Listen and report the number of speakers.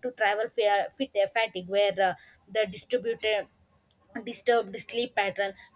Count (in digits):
1